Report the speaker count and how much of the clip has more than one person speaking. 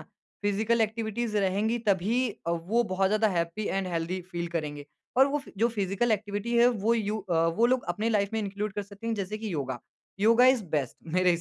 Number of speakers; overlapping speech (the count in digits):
1, no overlap